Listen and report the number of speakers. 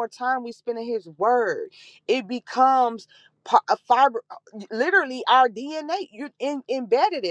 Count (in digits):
1